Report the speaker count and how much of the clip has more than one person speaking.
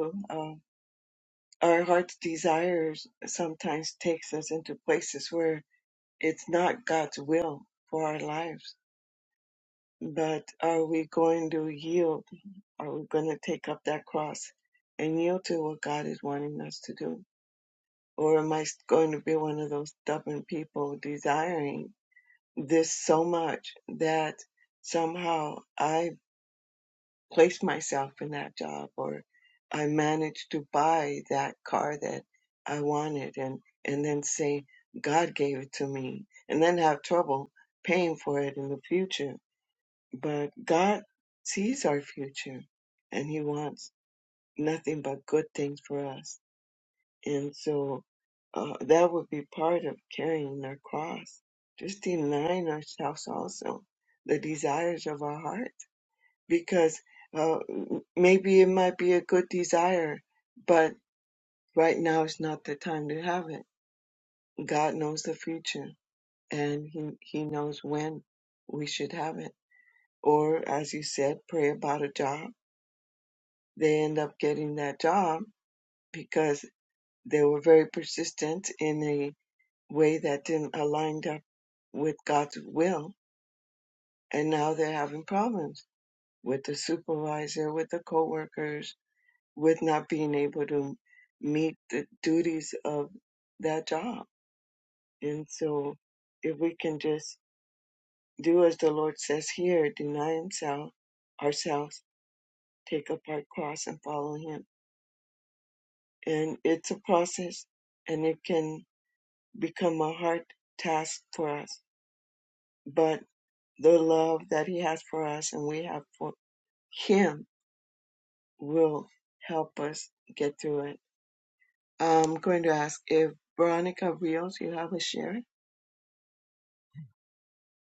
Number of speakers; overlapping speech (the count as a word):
one, no overlap